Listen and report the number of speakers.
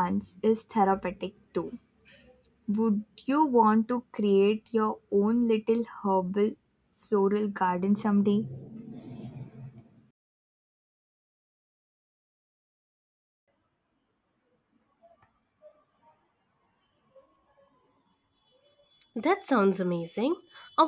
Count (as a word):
two